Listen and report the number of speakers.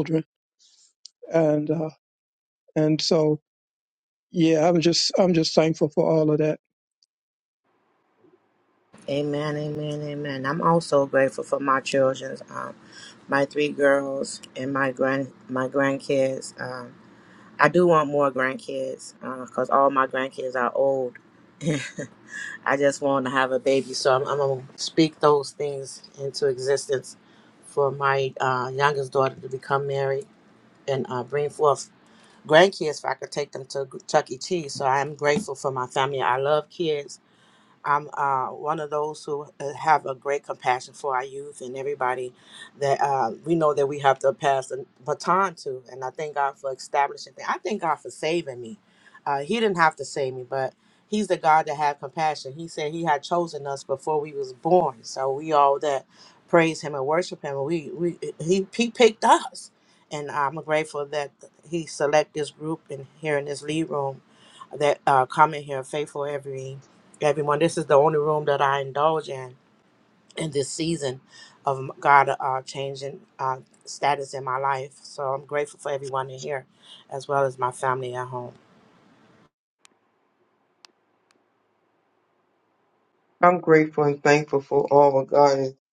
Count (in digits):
3